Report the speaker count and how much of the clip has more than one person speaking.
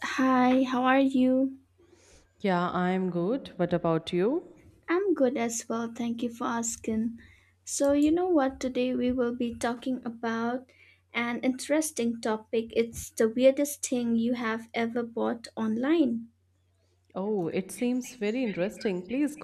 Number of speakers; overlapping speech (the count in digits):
2, no overlap